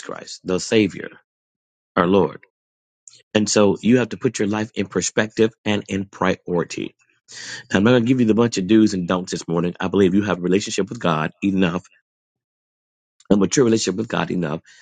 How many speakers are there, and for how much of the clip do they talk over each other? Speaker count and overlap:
1, no overlap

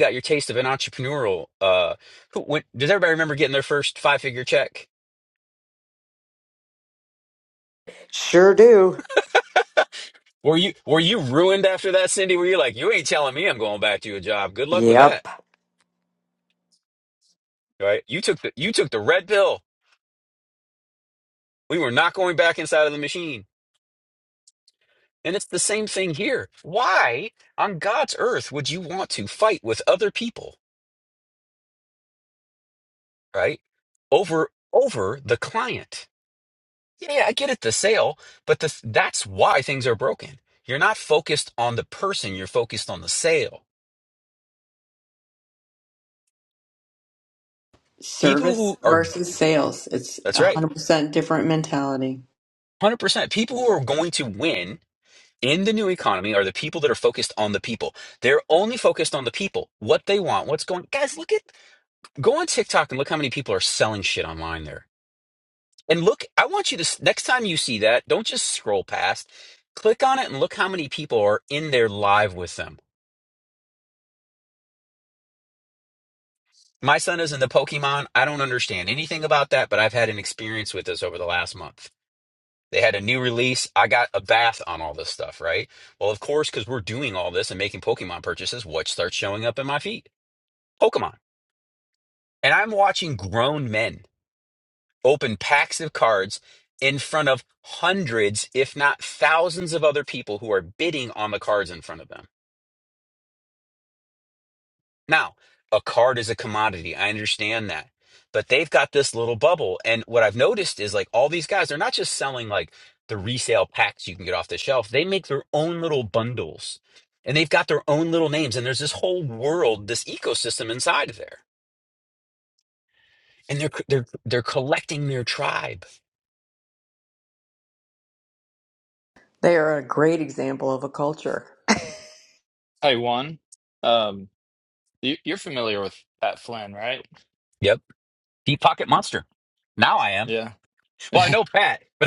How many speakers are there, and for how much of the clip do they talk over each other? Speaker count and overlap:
4, about 1%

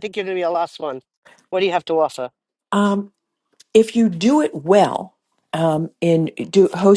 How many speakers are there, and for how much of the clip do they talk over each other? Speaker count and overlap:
2, no overlap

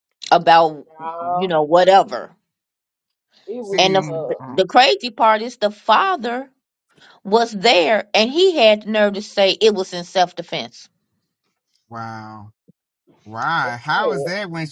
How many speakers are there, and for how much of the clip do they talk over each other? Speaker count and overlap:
3, about 10%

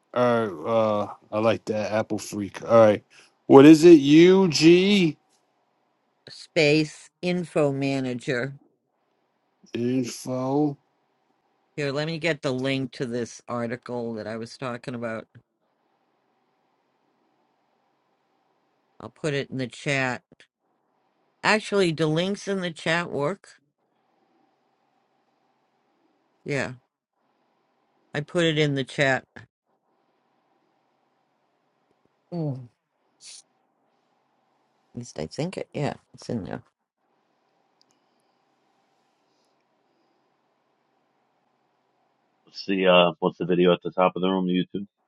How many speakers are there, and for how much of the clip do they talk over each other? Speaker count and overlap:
3, no overlap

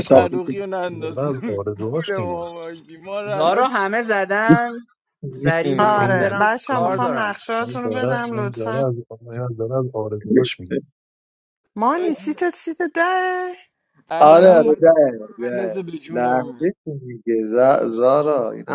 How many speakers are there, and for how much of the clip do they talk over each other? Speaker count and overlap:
5, about 40%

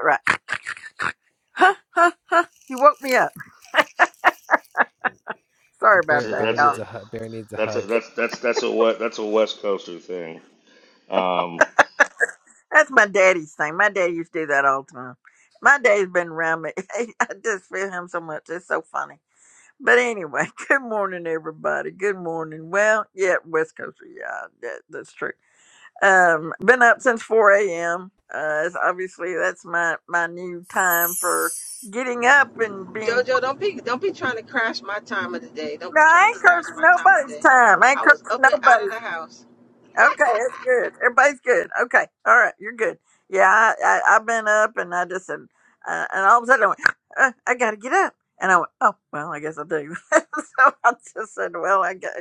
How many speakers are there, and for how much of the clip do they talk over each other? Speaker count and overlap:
4, about 7%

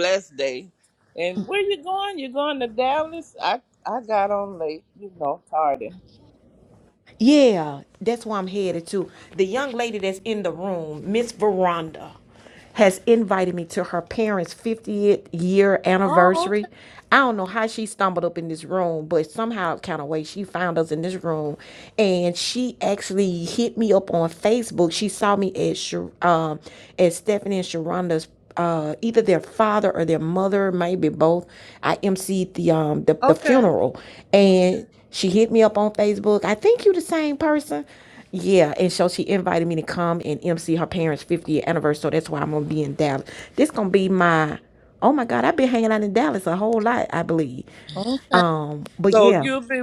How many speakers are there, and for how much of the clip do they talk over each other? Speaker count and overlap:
2, about 2%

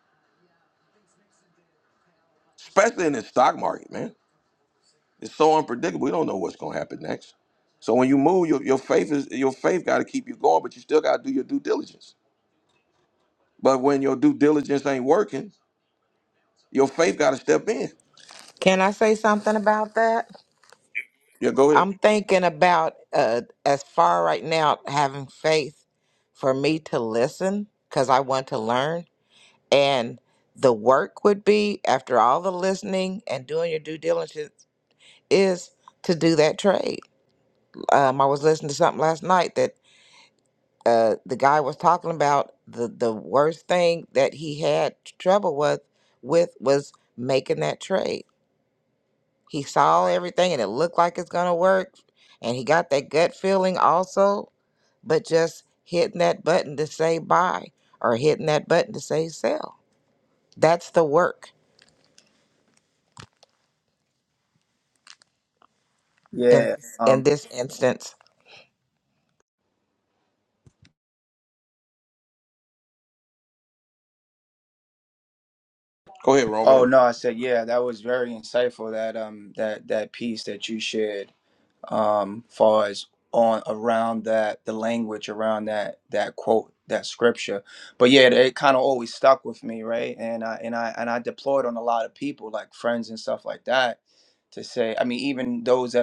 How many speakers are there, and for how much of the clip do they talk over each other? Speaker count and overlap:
3, about 1%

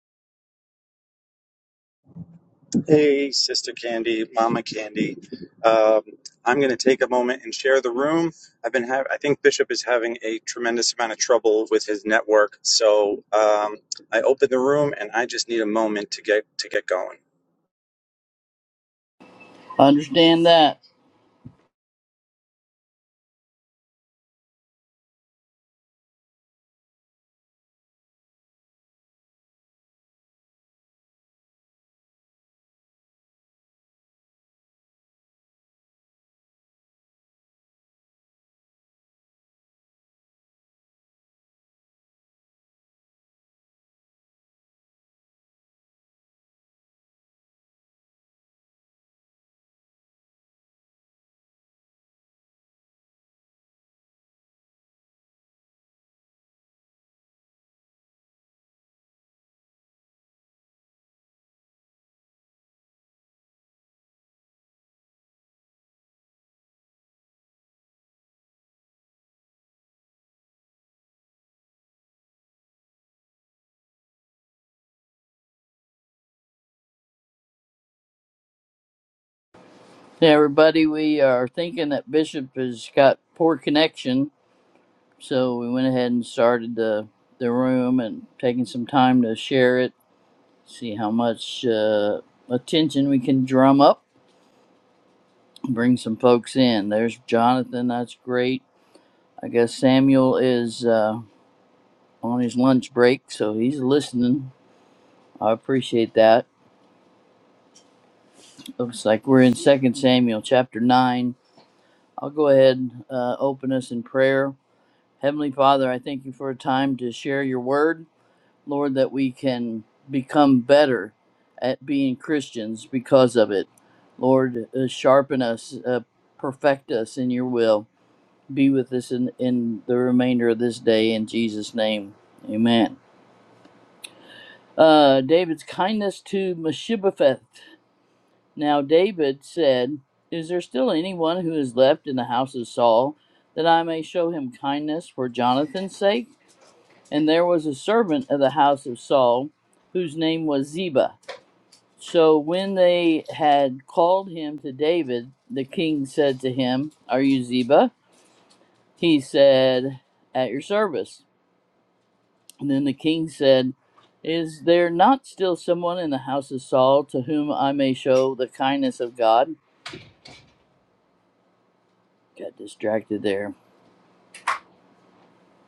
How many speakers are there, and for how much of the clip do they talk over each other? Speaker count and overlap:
2, no overlap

